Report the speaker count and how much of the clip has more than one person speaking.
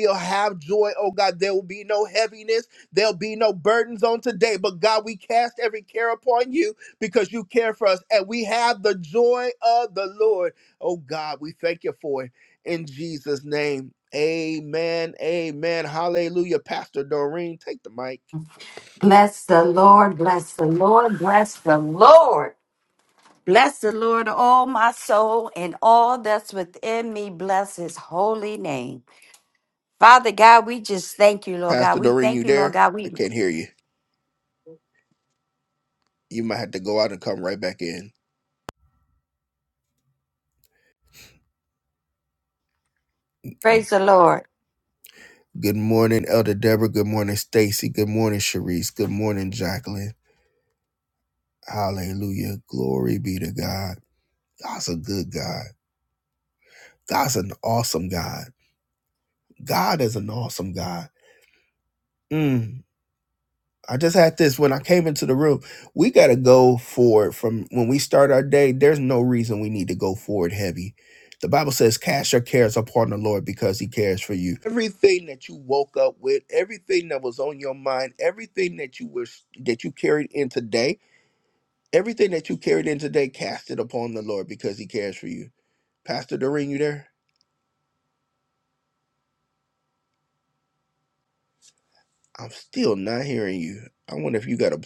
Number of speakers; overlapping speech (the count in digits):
2, about 1%